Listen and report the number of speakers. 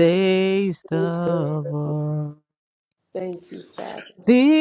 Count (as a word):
two